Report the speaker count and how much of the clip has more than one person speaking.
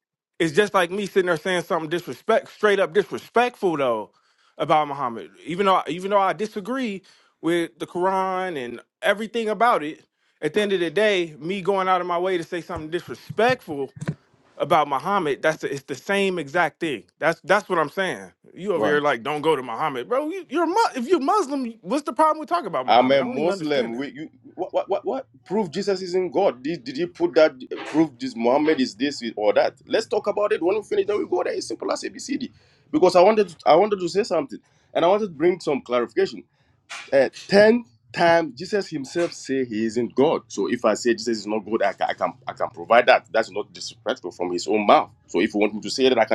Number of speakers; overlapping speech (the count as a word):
two, about 2%